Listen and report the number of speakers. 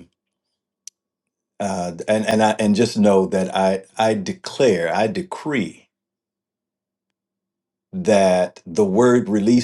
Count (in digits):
1